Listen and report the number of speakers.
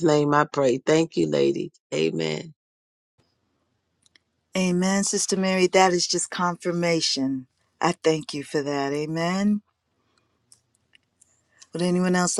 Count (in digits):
2